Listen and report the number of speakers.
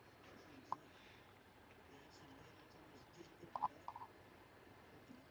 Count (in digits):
0